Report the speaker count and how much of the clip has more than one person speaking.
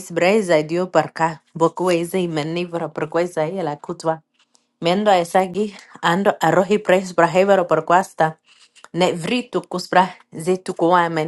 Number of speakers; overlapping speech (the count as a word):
one, no overlap